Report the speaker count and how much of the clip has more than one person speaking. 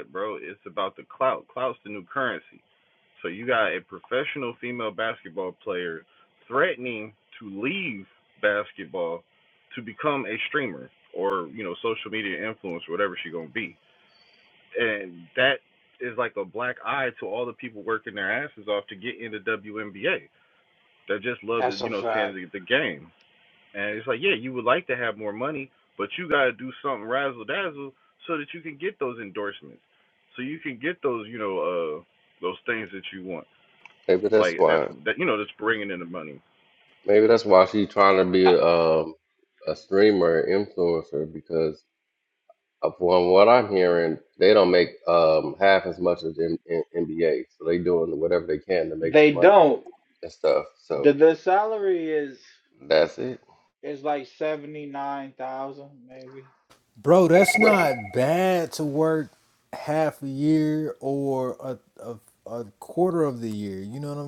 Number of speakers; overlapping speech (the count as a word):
four, about 4%